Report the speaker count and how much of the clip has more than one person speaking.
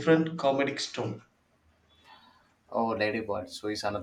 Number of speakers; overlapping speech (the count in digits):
2, no overlap